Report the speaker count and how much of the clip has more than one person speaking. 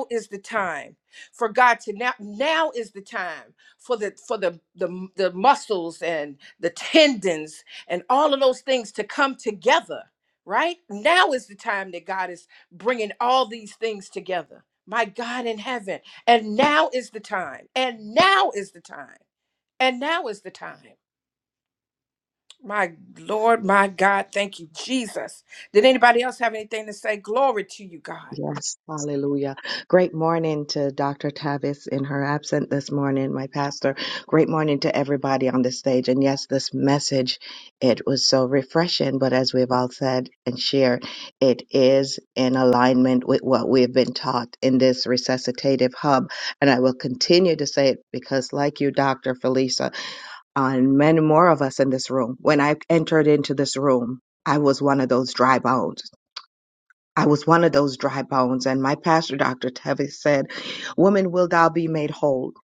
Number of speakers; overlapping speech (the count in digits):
2, under 1%